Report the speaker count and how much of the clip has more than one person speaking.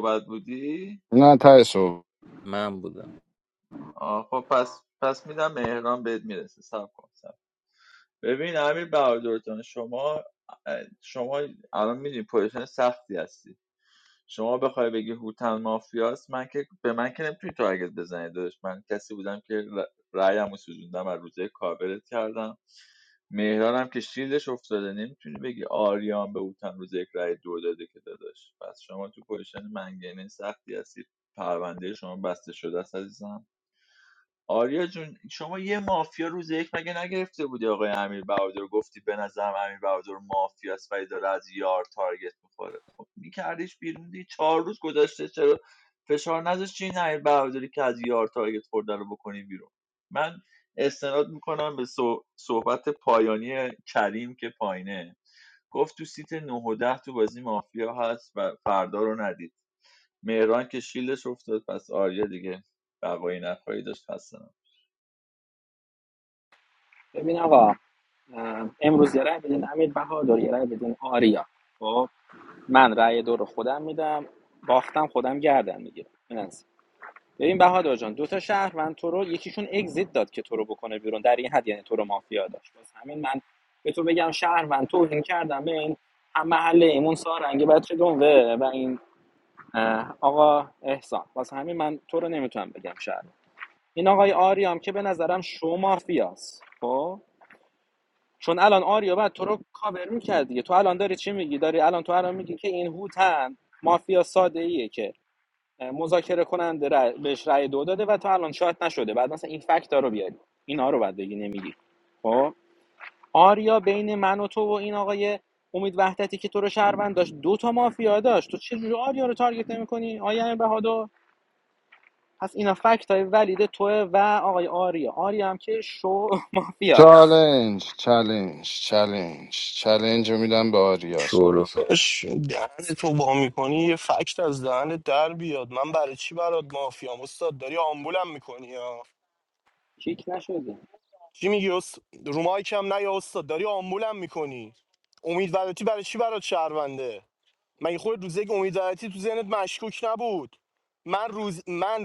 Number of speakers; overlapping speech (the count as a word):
five, under 1%